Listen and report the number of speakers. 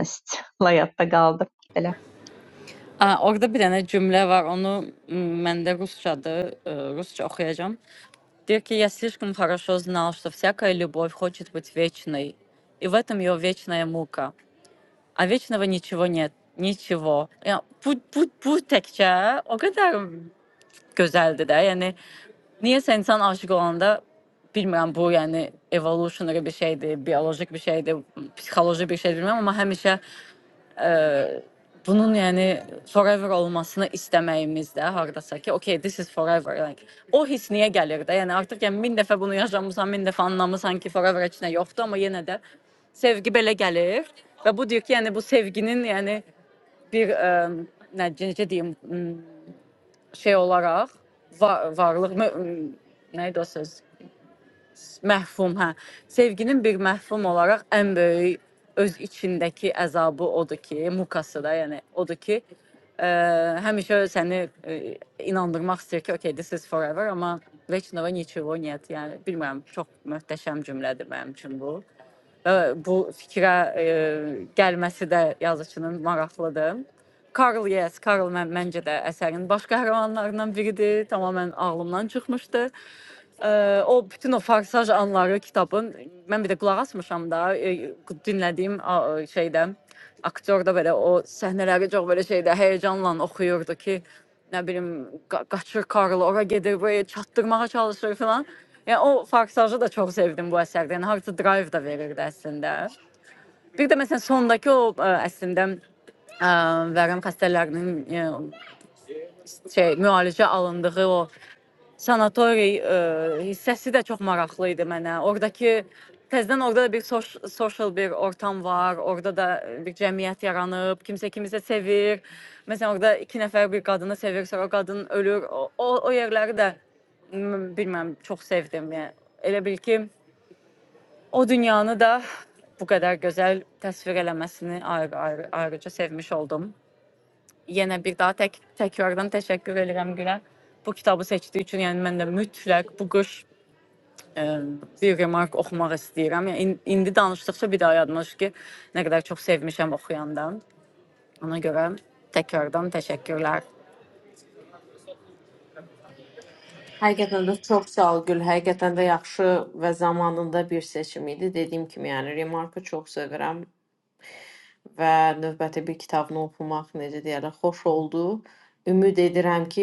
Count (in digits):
3